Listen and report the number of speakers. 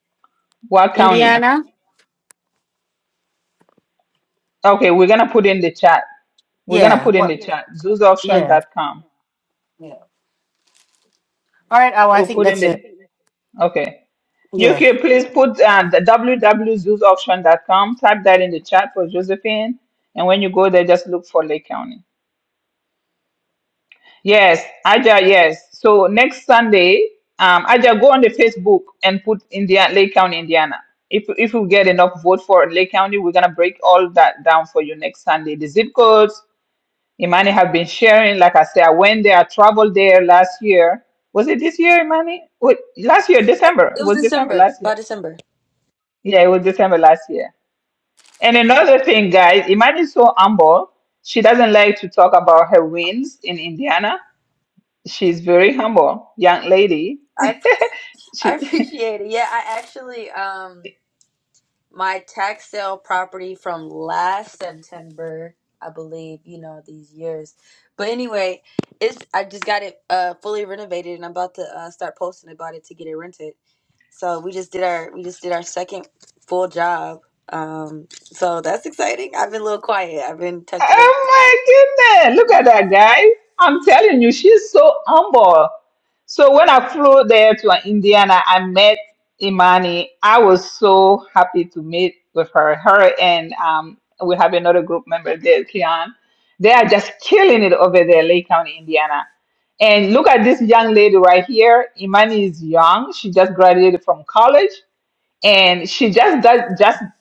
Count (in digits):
3